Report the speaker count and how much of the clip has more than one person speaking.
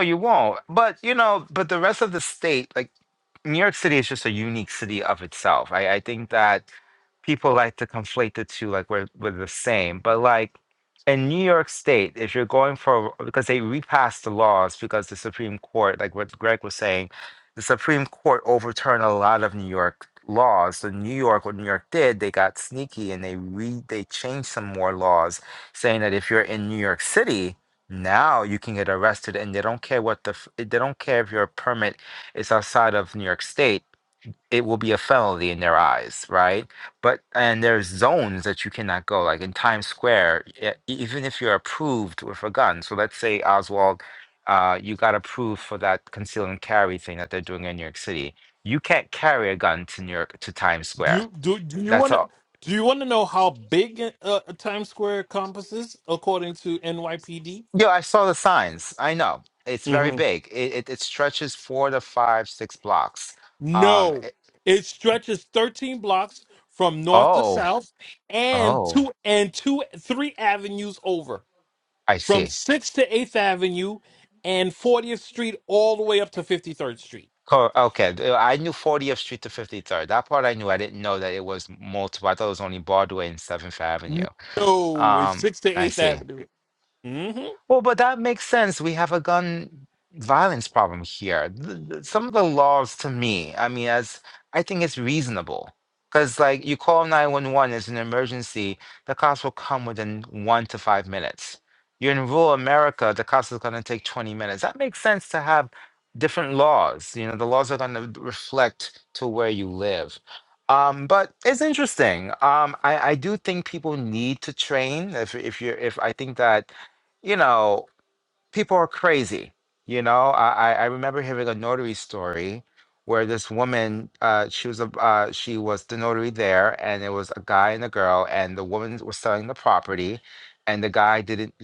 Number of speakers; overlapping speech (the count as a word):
two, about 3%